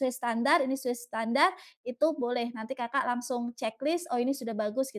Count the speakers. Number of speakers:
1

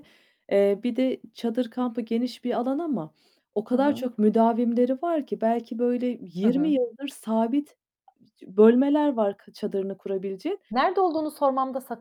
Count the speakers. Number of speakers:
2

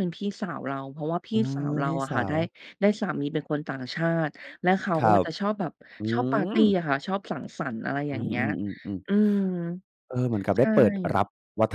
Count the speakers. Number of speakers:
2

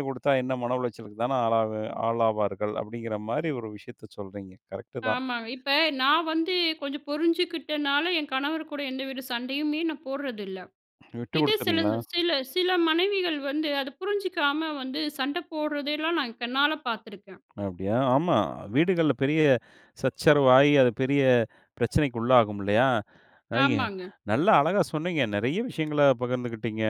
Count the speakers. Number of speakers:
2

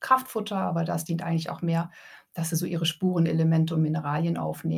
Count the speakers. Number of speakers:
1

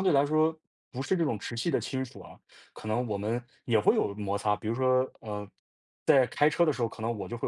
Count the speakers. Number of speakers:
1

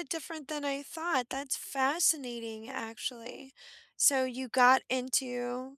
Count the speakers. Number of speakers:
1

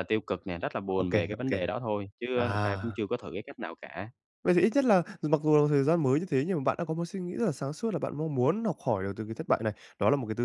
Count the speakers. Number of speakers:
2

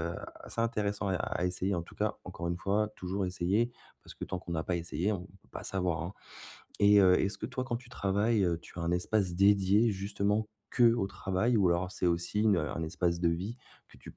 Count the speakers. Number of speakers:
1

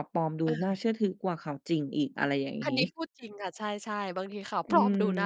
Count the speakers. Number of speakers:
2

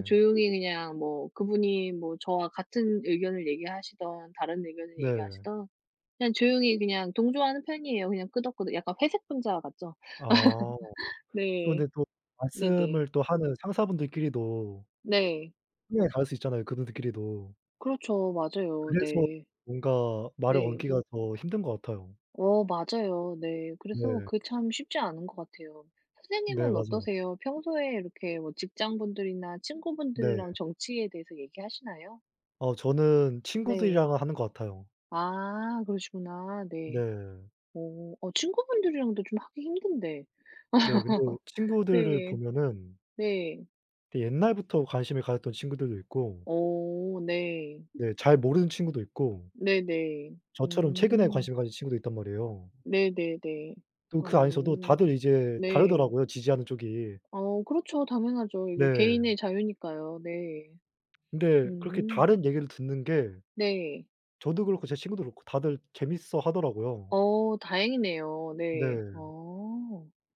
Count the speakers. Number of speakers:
2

